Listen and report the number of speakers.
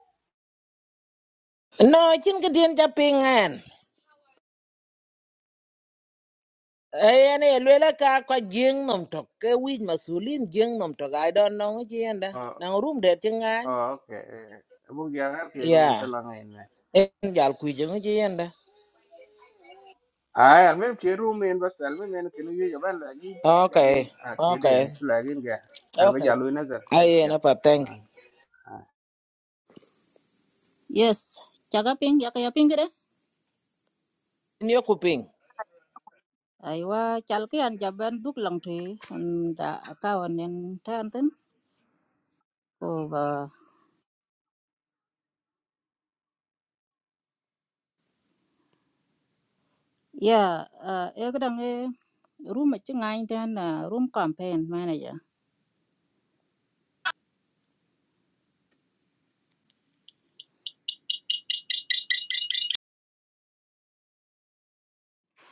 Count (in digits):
3